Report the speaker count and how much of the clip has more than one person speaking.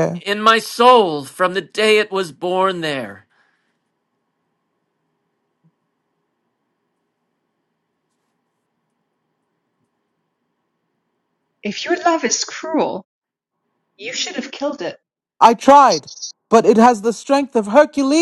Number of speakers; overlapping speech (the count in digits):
3, no overlap